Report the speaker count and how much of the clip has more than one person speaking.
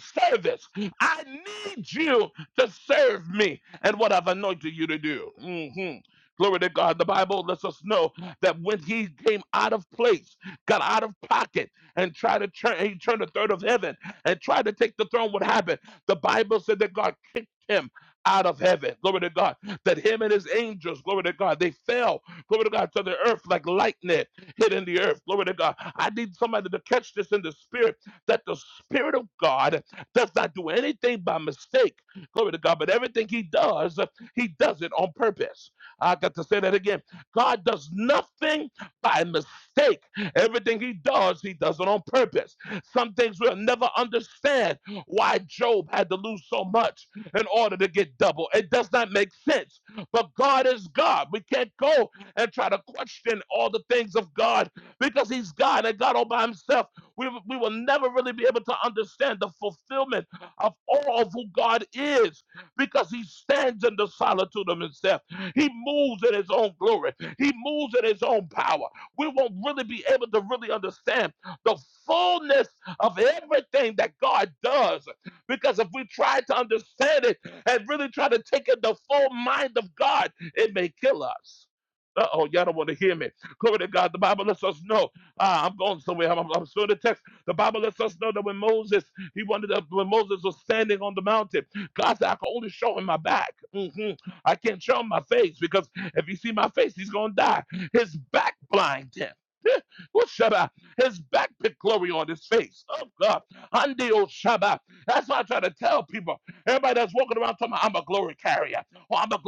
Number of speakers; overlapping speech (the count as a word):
one, no overlap